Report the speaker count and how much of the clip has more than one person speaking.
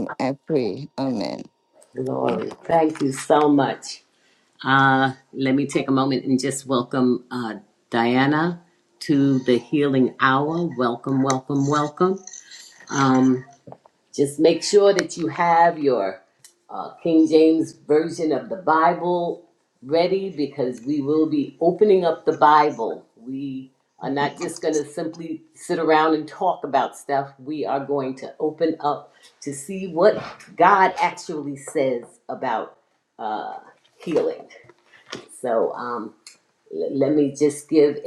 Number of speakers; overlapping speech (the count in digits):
2, no overlap